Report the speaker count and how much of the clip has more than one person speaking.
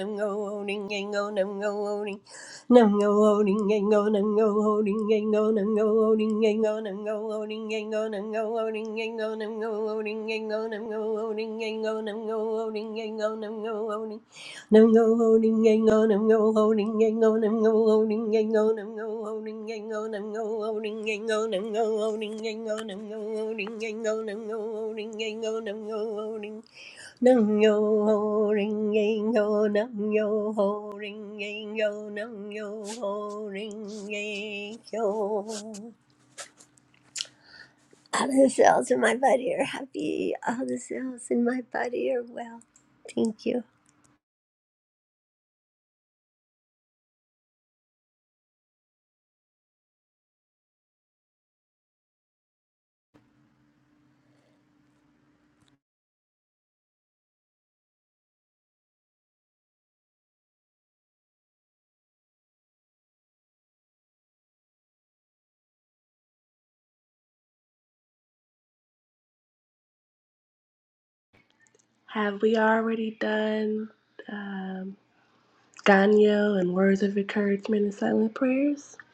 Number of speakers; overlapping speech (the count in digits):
2, no overlap